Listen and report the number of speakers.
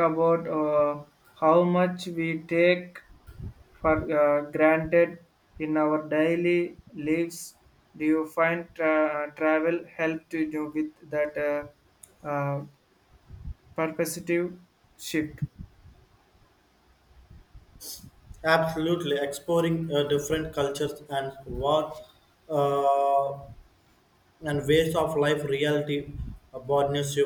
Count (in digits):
2